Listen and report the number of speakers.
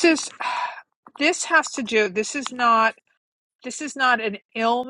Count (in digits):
1